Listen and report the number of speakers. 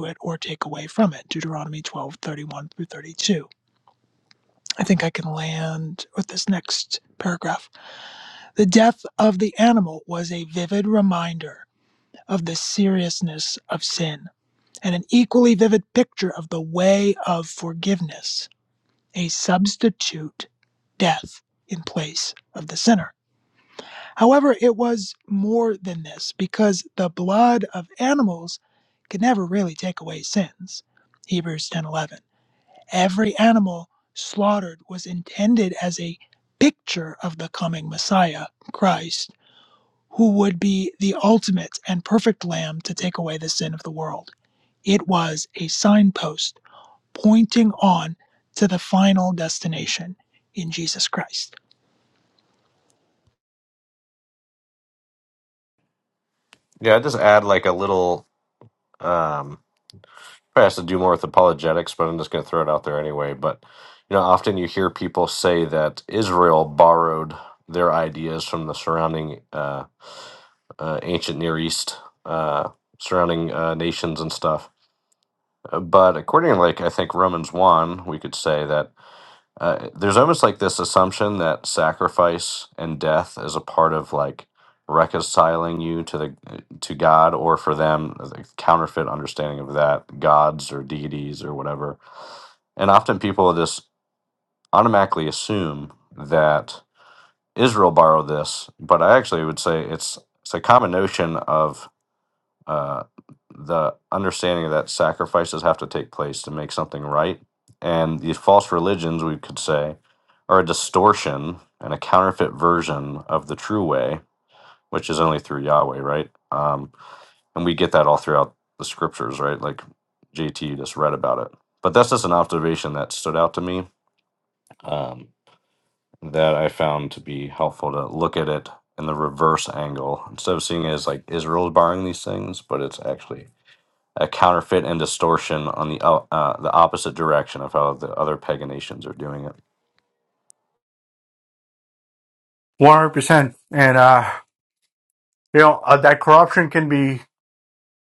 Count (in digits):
3